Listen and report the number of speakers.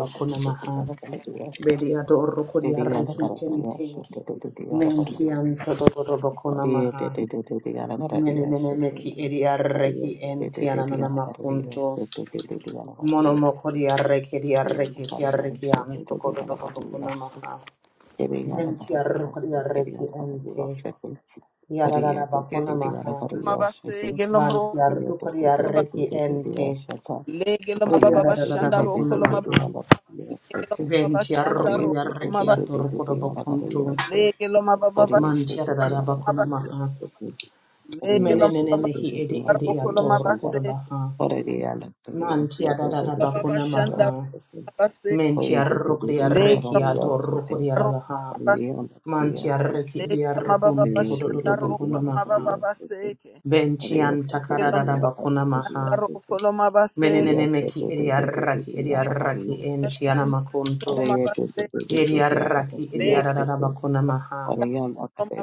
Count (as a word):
three